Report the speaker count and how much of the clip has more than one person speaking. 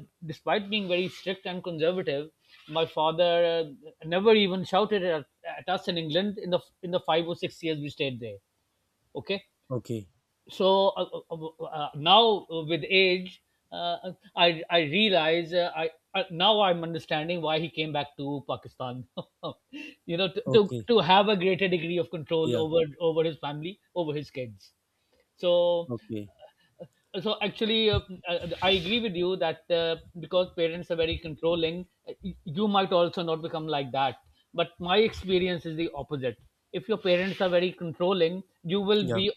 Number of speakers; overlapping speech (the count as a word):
two, about 2%